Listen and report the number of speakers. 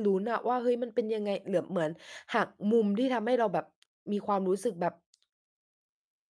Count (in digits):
1